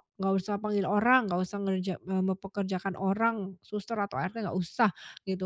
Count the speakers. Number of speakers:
1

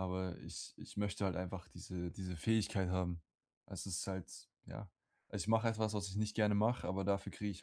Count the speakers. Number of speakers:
1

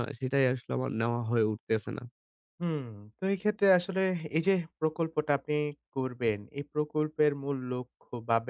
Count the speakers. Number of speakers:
2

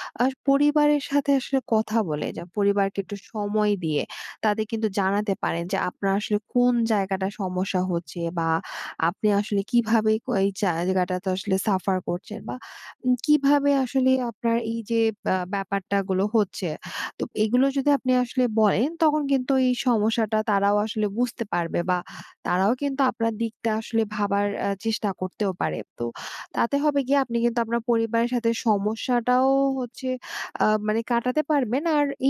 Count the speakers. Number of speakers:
1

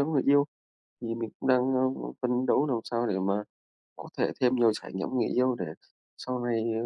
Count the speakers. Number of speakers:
1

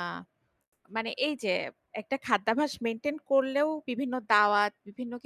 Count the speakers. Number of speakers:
1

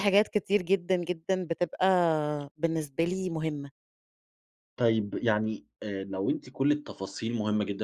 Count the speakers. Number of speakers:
2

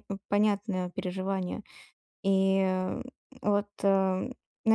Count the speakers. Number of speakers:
1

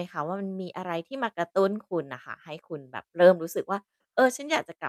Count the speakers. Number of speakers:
1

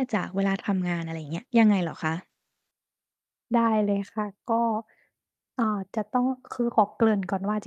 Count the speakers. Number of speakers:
2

